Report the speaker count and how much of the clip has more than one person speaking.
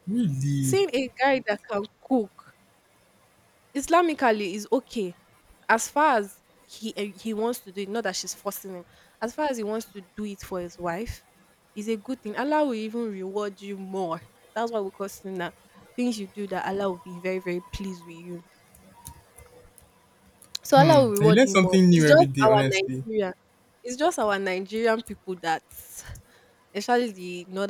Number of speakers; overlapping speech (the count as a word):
two, about 9%